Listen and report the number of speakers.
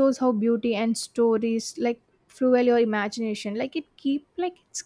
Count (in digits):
1